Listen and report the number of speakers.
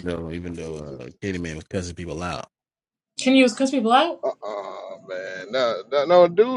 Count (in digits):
3